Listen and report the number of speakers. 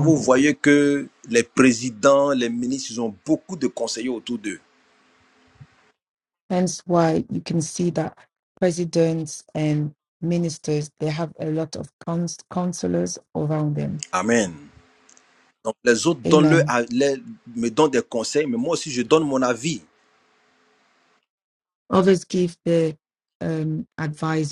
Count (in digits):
2